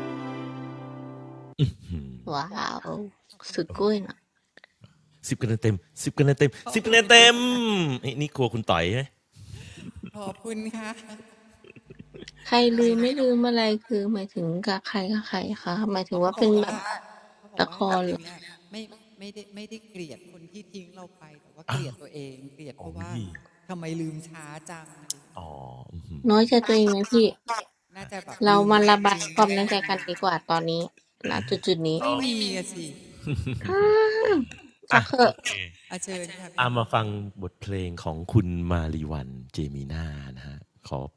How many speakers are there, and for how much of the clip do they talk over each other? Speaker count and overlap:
three, about 11%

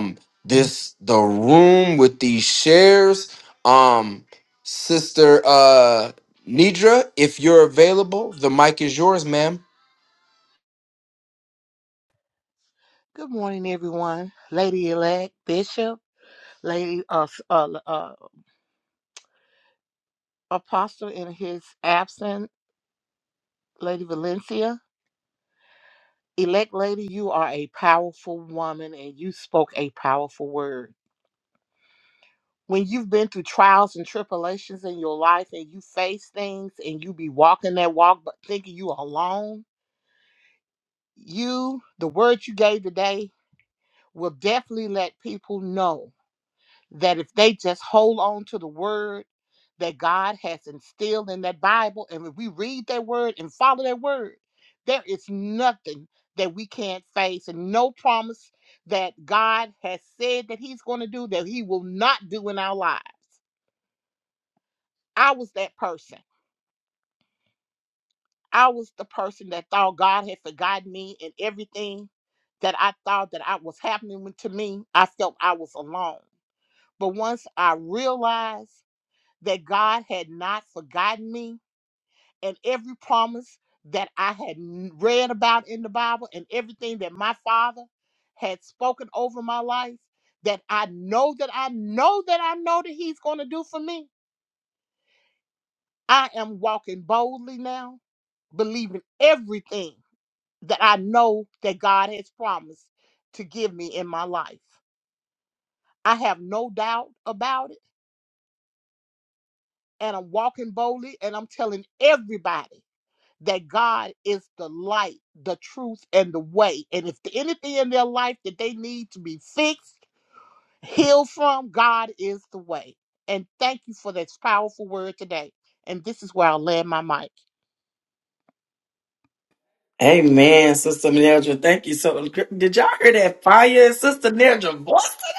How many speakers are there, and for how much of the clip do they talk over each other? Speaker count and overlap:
three, no overlap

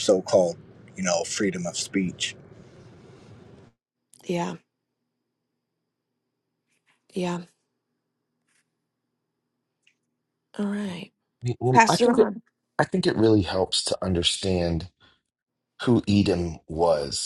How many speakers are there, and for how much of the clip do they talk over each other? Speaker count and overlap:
three, about 3%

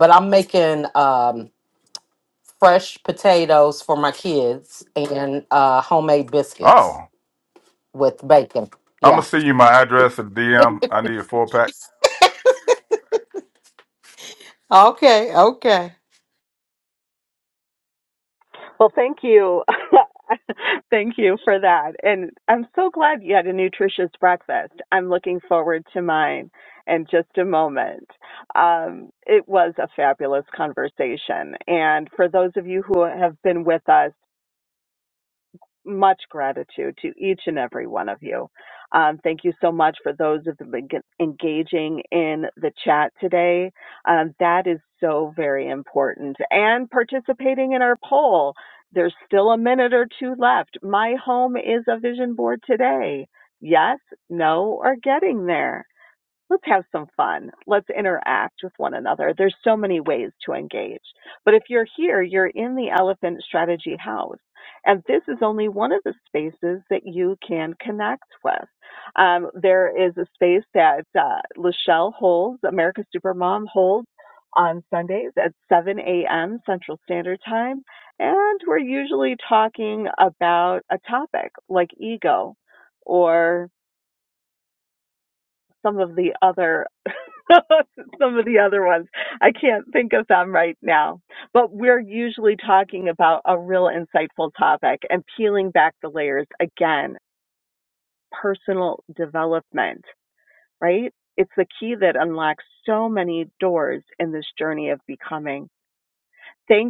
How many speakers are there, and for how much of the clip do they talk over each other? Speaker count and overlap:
three, under 1%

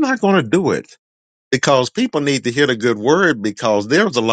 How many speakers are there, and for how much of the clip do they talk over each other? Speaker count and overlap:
one, no overlap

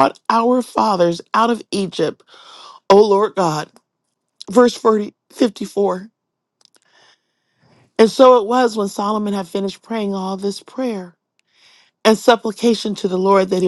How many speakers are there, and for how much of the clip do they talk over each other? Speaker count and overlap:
one, no overlap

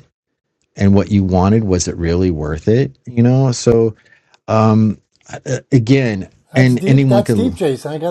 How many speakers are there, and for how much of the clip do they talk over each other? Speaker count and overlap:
two, about 13%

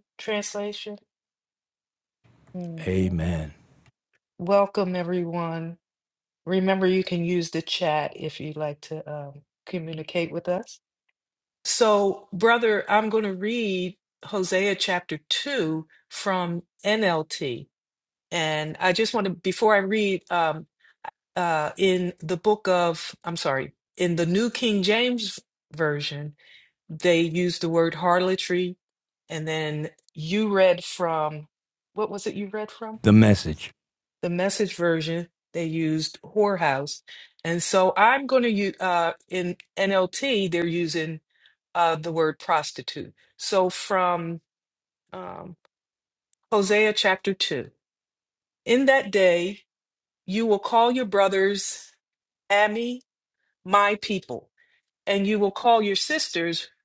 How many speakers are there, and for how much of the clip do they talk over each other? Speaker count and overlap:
two, no overlap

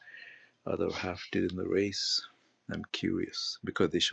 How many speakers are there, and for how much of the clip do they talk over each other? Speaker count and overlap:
one, no overlap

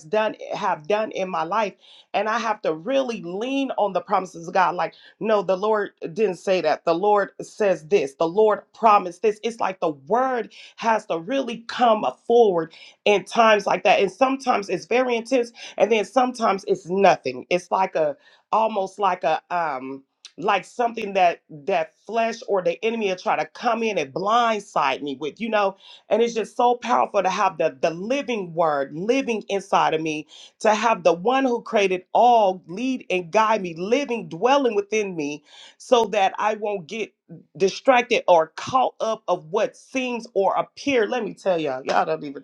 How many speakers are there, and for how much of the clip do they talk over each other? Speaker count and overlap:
one, no overlap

